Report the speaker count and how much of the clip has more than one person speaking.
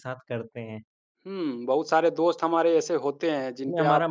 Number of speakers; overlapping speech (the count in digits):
2, about 13%